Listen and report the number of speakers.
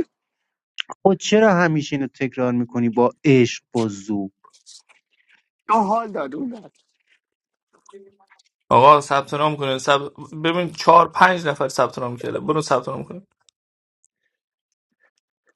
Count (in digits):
3